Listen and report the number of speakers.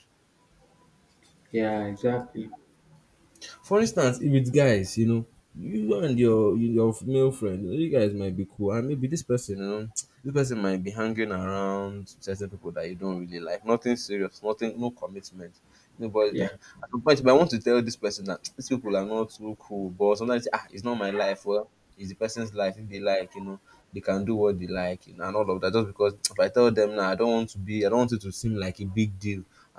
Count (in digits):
2